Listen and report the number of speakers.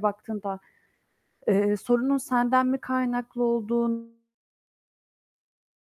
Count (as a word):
one